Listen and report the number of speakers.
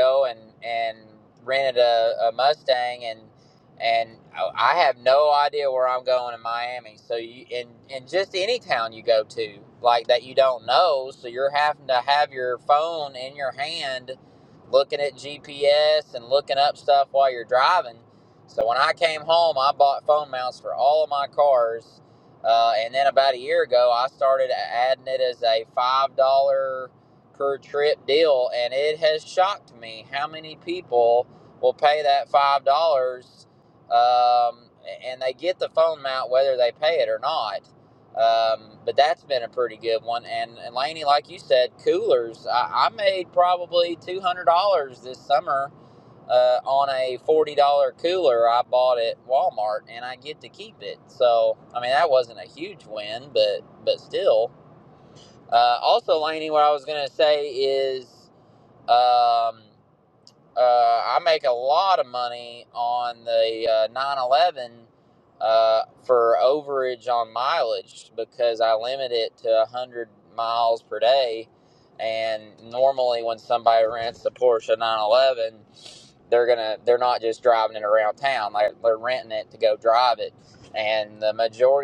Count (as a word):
one